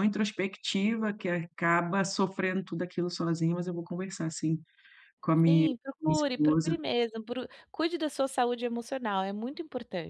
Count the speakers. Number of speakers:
2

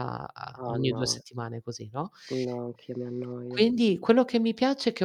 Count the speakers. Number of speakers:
2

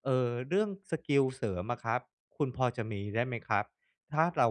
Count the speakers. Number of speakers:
1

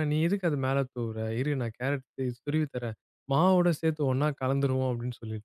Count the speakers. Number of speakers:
1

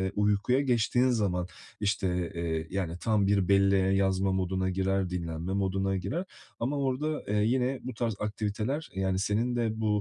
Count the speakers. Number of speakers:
1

